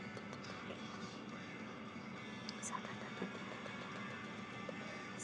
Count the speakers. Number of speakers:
0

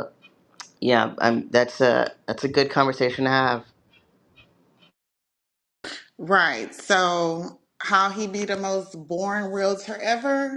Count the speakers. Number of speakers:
2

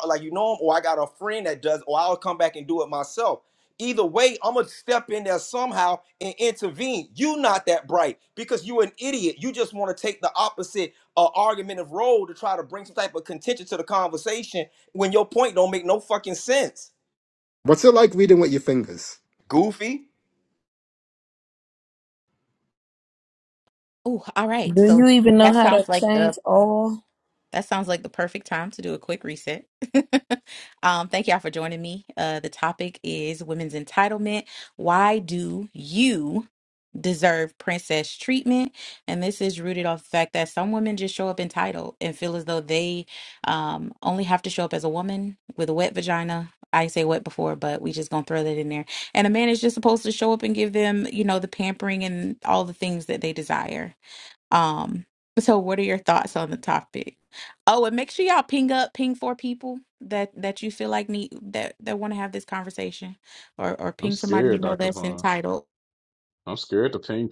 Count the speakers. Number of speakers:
5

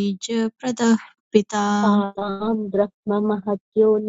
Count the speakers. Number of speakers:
2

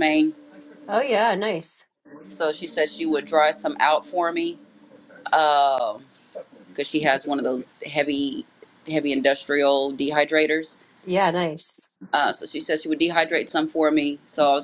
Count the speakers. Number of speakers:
2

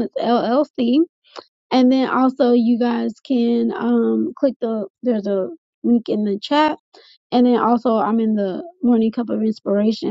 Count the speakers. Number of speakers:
1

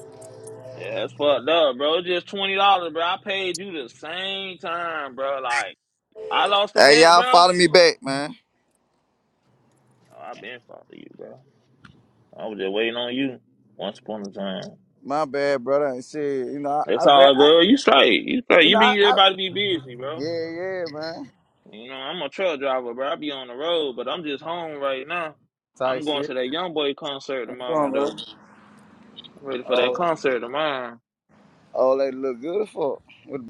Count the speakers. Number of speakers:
2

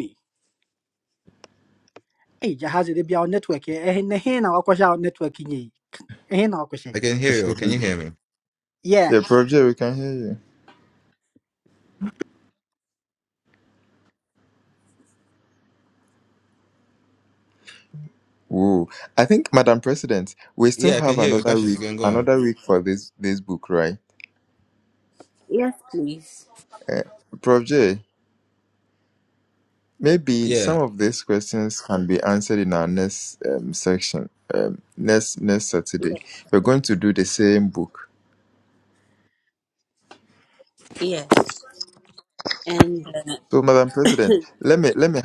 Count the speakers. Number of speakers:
4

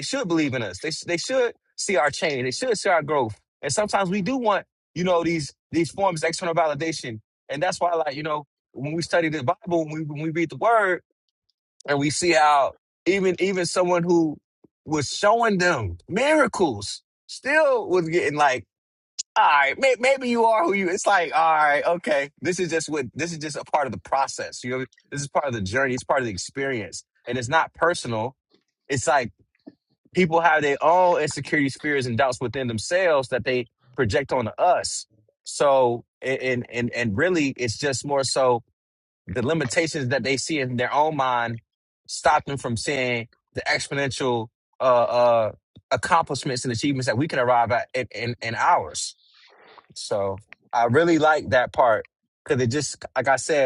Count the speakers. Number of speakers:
1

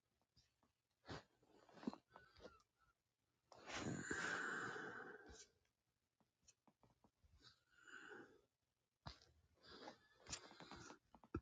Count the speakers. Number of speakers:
0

